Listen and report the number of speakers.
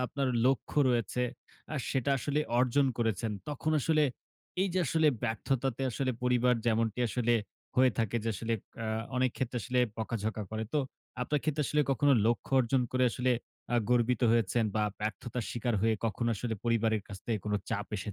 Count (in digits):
1